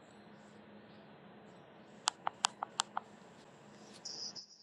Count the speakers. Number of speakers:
zero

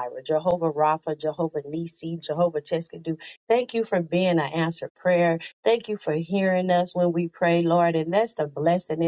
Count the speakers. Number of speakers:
one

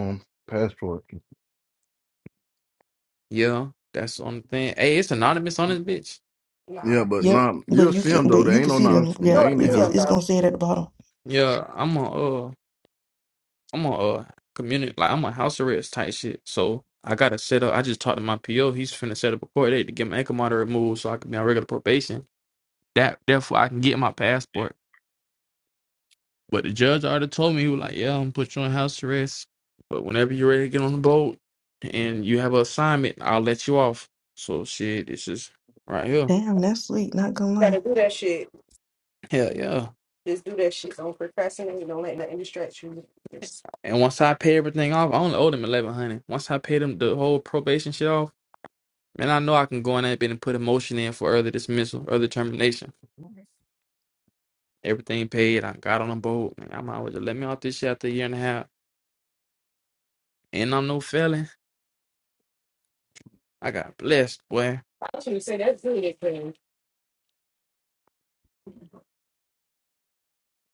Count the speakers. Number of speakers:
four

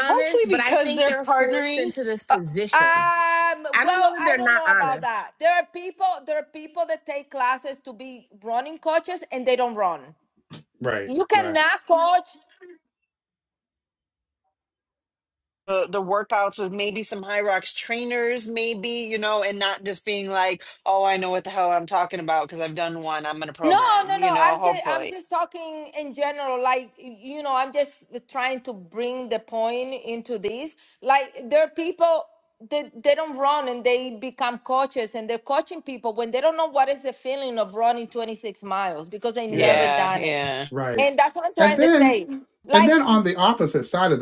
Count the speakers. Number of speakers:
four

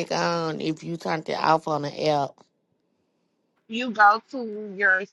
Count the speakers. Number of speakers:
two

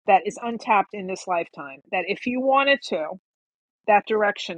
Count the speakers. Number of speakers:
one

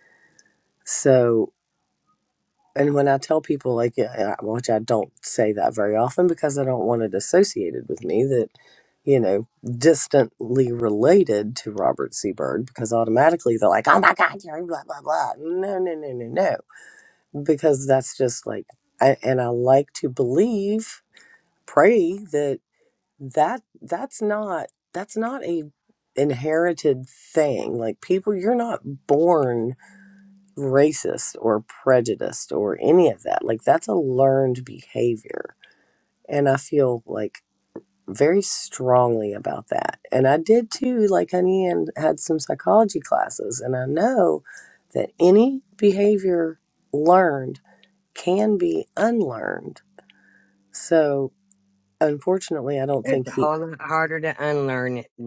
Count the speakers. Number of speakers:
two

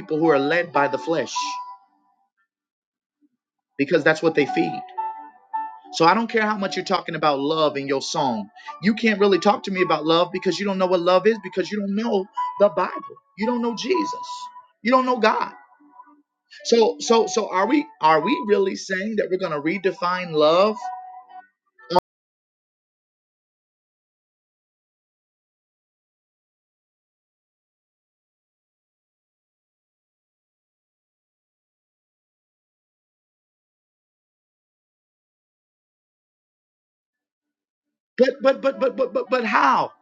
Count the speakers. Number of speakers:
one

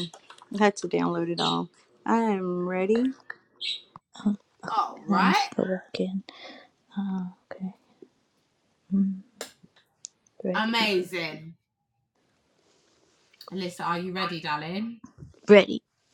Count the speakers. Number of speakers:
three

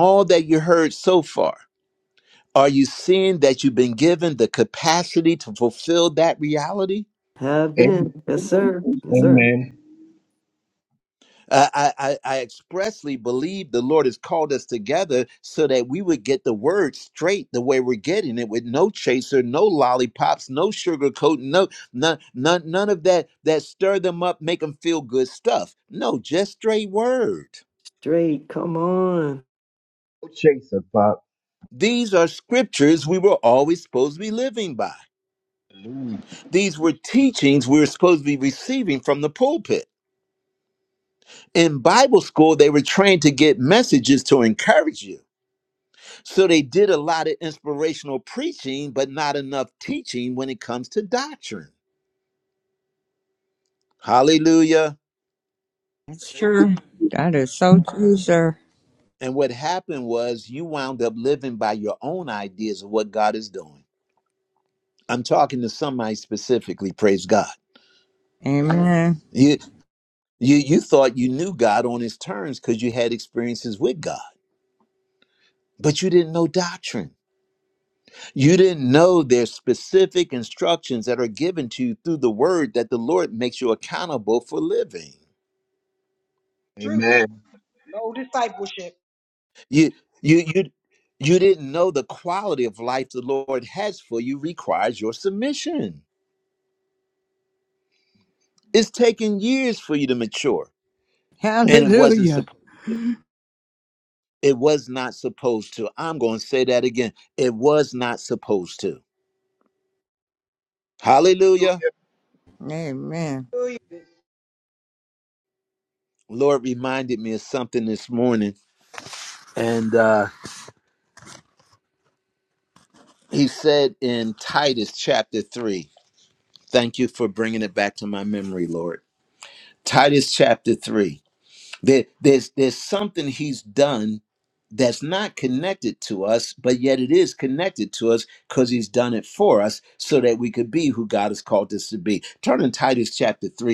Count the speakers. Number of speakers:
five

